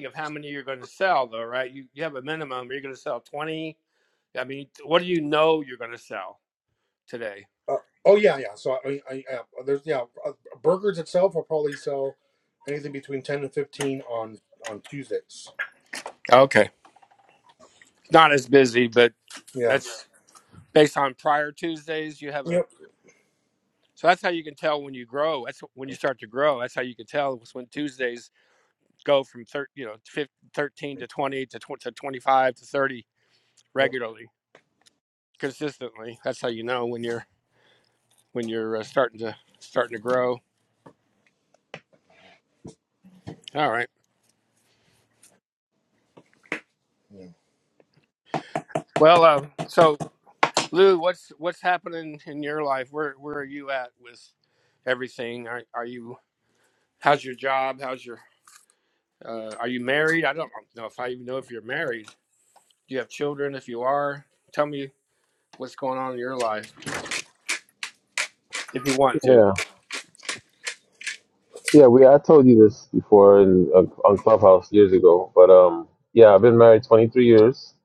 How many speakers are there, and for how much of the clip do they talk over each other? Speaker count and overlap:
3, about 1%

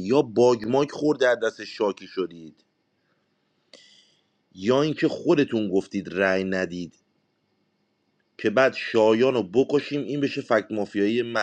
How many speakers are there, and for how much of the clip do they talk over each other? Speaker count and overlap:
1, no overlap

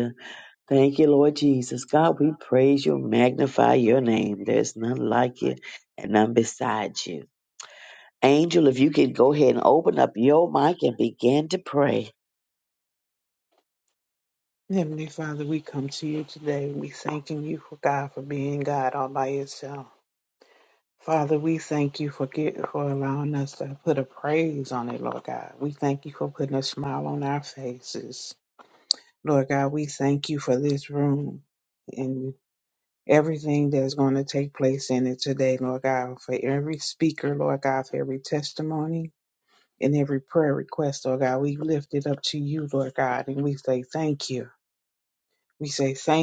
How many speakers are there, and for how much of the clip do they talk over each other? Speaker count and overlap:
2, no overlap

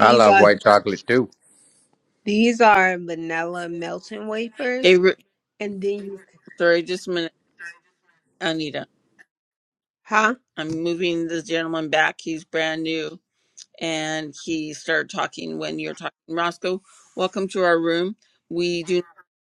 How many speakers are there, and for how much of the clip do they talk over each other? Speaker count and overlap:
3, about 3%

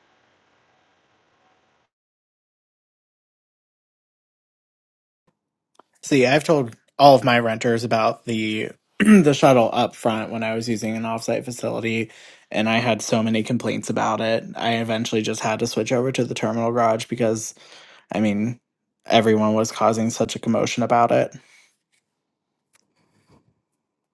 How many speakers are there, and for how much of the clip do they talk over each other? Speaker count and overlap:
1, no overlap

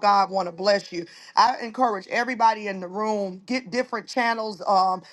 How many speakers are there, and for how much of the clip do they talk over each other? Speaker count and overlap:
1, no overlap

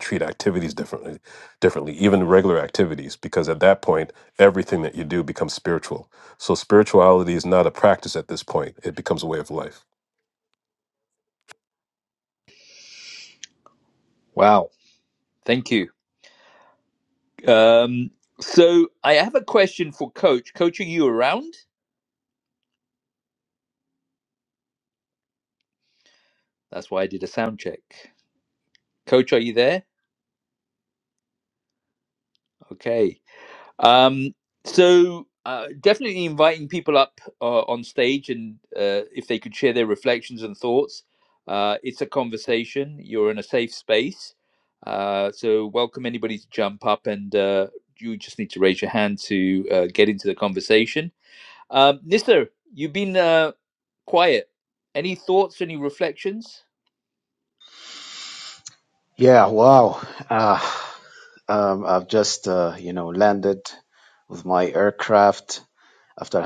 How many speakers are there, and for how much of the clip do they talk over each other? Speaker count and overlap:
3, no overlap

